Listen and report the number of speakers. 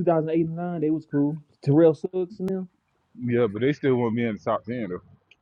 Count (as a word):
two